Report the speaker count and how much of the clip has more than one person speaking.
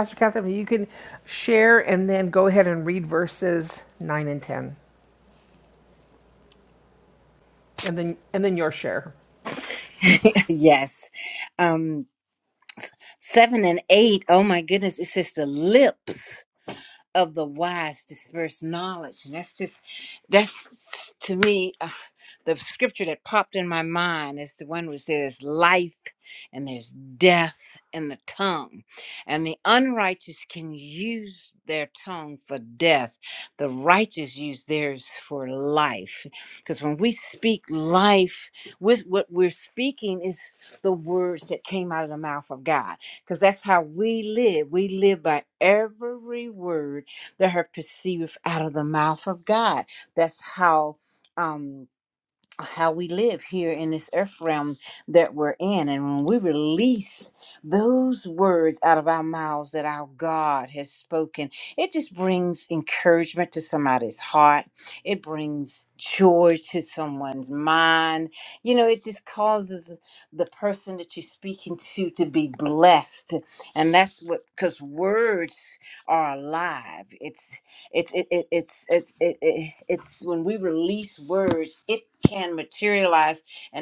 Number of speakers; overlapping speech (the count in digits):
2, no overlap